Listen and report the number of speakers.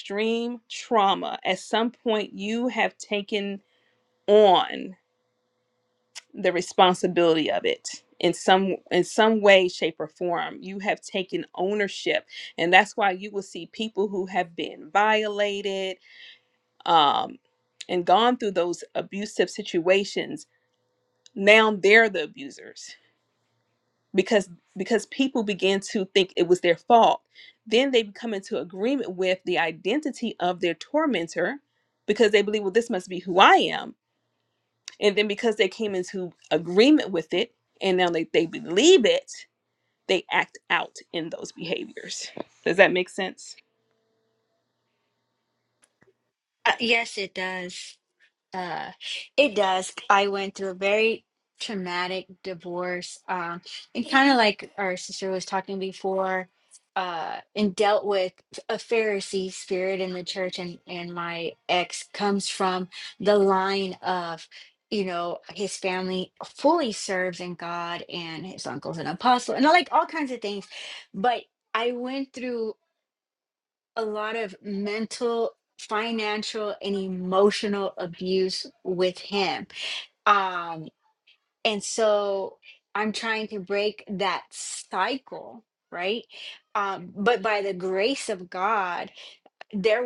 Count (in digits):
2